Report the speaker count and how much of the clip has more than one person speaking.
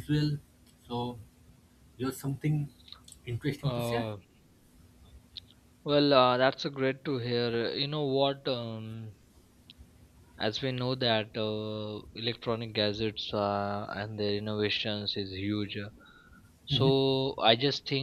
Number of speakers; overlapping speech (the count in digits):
2, about 4%